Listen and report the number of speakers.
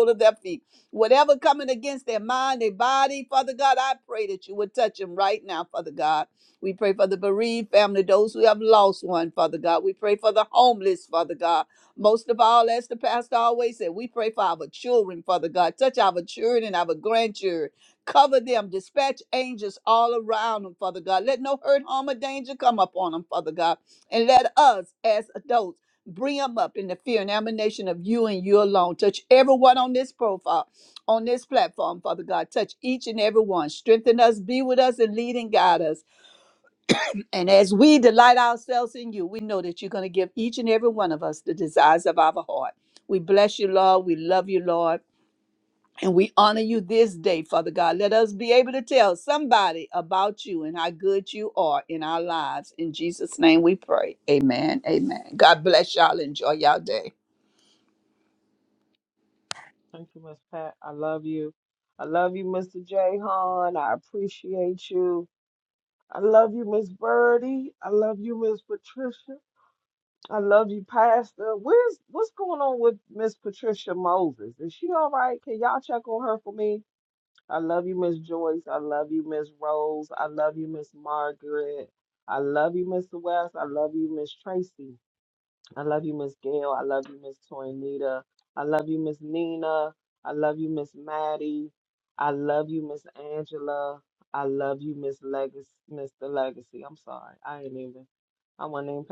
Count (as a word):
two